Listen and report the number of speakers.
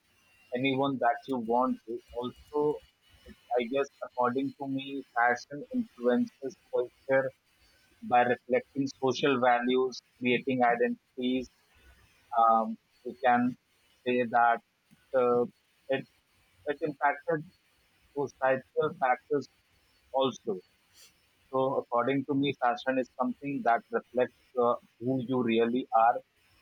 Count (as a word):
one